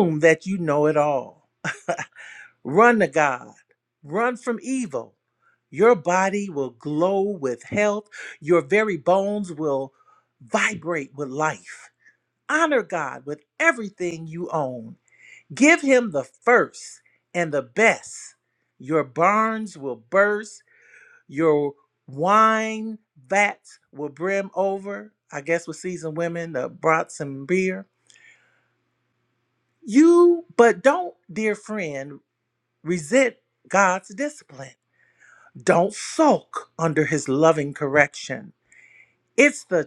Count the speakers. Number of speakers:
1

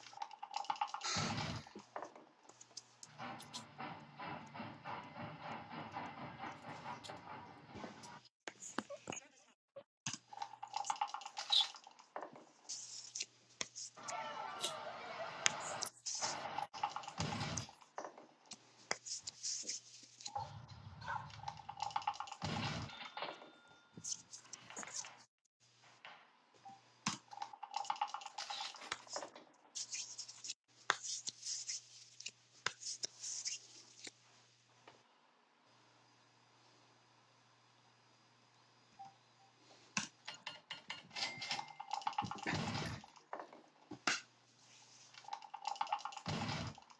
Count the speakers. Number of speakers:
0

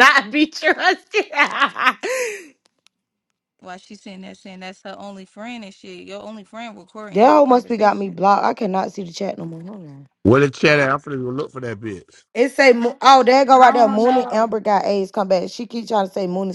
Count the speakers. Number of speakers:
4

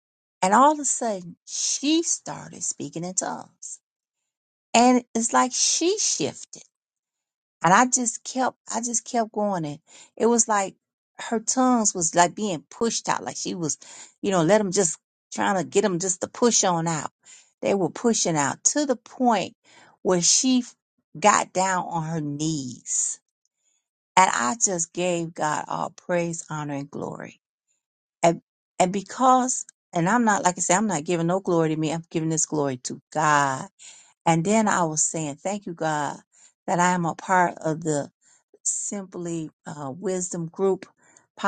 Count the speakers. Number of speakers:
1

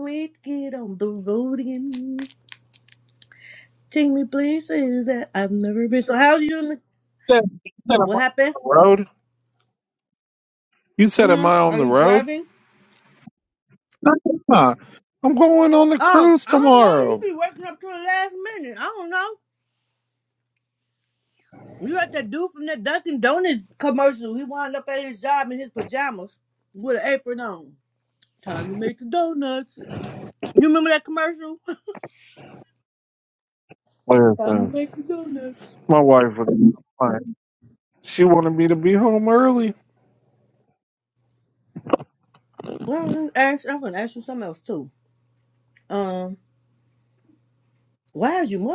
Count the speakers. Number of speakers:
2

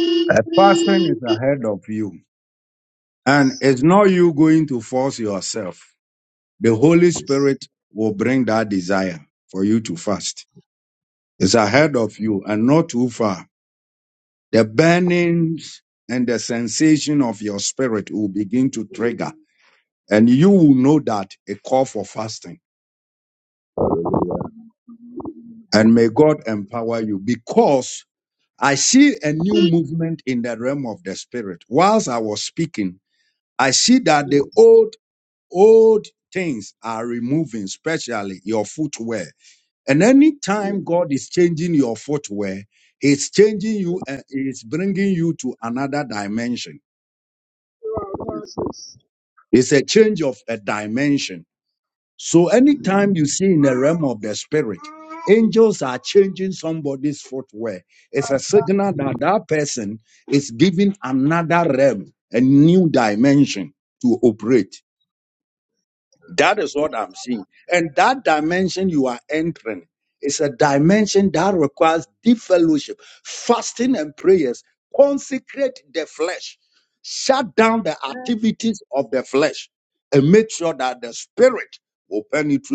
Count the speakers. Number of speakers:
2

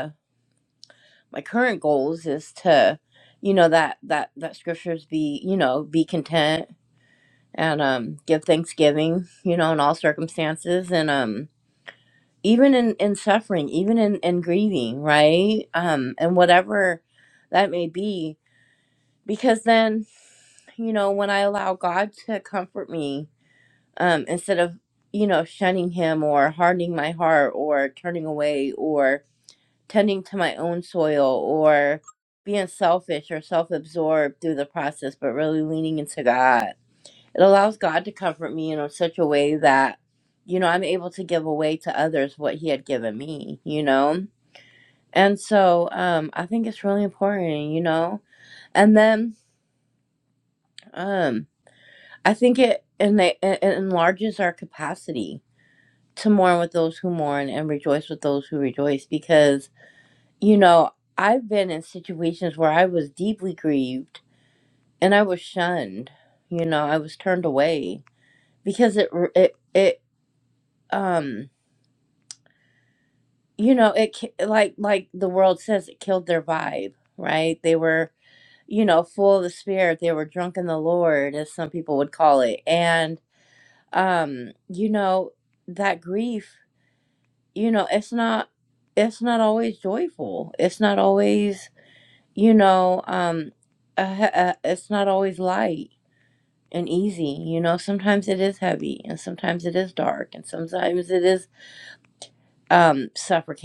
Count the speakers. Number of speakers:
1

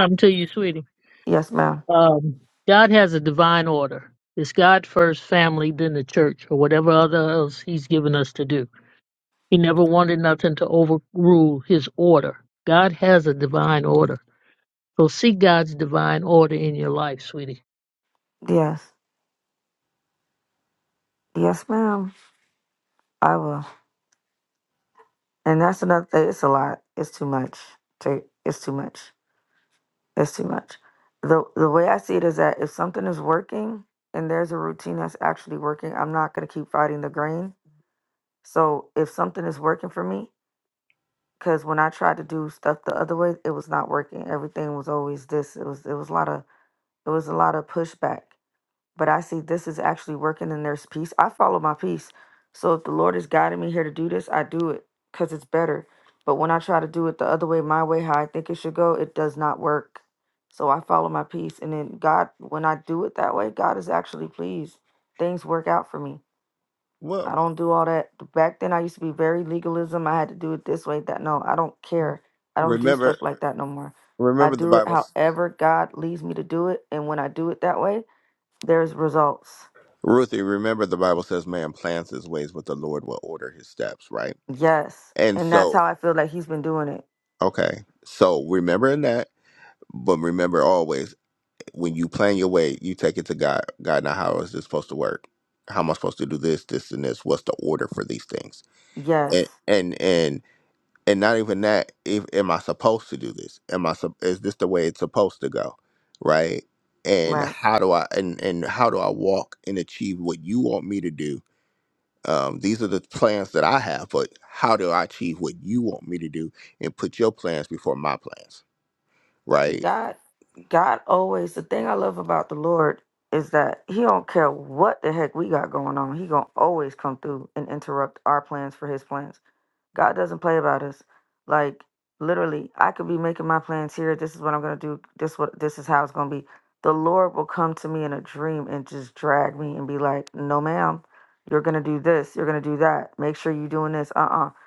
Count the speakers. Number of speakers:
3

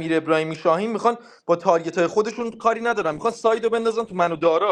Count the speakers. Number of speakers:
1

